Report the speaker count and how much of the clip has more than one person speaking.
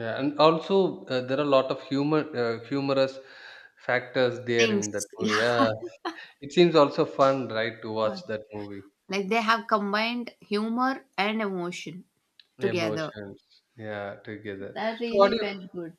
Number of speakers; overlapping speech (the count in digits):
2, about 12%